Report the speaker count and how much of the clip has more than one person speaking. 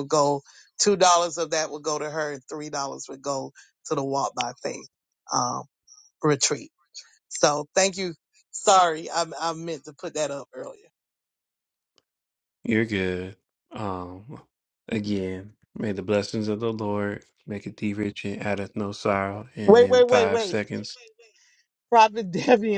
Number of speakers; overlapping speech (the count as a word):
three, about 4%